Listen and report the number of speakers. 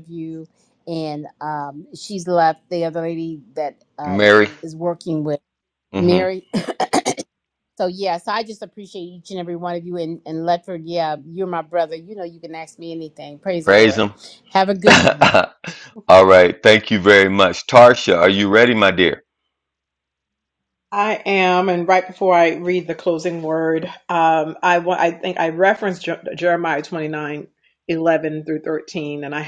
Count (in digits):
3